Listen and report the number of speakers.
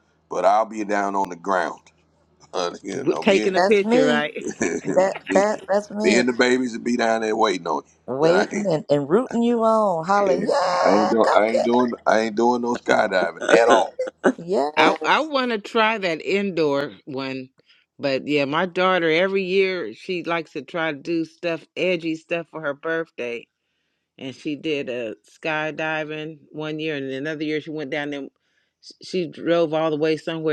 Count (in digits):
3